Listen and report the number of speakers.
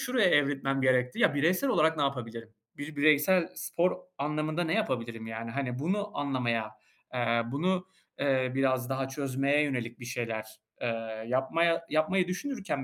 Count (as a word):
one